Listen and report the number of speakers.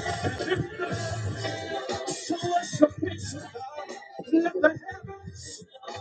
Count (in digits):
0